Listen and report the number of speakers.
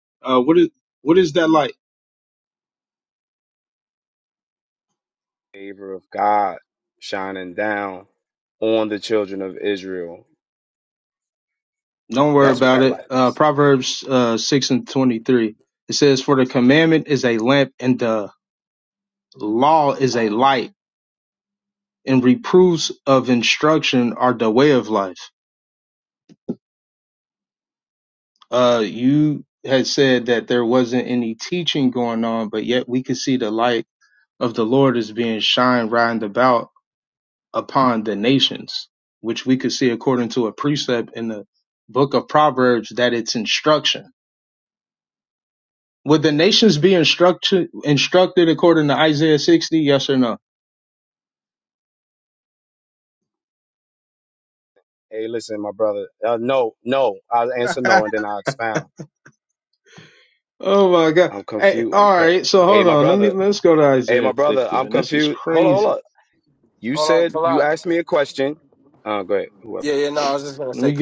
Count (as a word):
three